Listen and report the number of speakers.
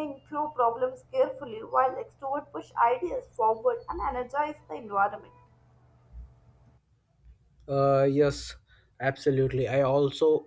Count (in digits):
2